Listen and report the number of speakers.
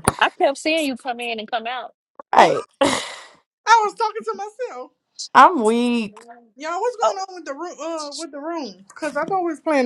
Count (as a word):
three